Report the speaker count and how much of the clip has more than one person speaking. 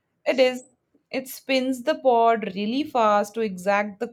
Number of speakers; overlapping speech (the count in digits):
1, no overlap